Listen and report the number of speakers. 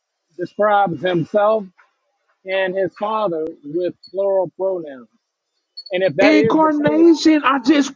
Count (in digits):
2